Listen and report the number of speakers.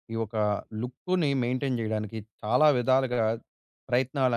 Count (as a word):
one